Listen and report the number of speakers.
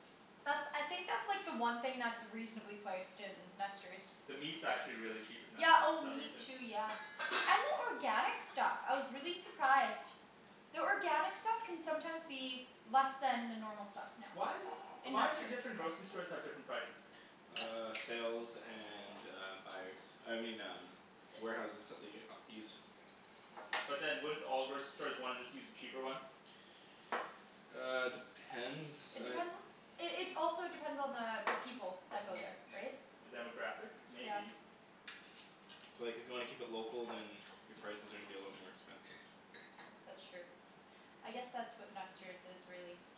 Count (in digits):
3